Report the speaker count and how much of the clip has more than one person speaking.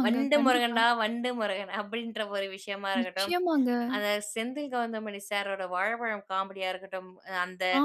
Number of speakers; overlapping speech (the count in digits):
2, about 15%